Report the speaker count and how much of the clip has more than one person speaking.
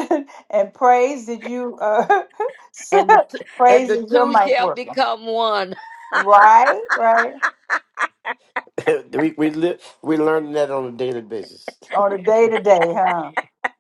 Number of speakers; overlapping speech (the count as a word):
three, about 10%